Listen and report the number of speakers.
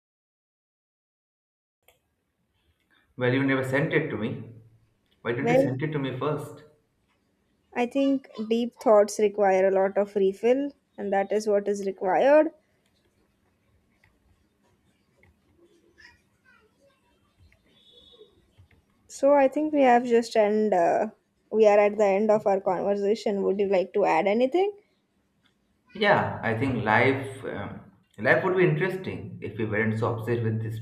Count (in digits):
2